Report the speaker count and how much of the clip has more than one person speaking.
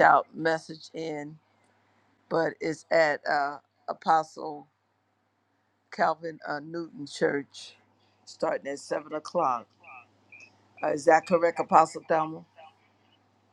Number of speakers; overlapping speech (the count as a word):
one, no overlap